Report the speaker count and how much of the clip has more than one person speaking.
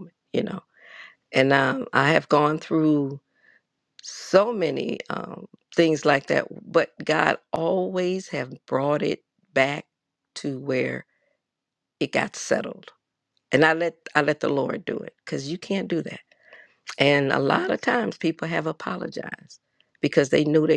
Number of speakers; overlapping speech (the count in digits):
1, no overlap